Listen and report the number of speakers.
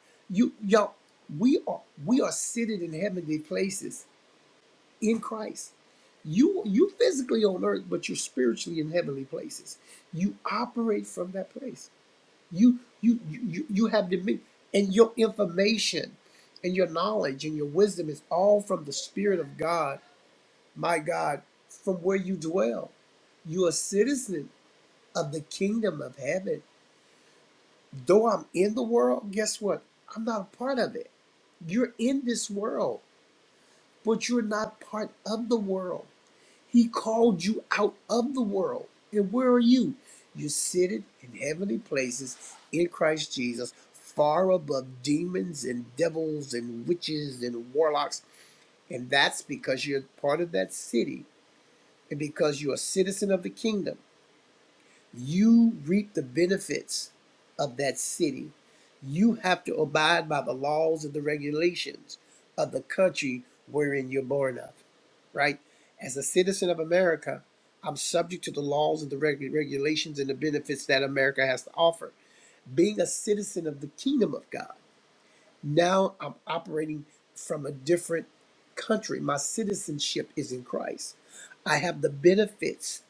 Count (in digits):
1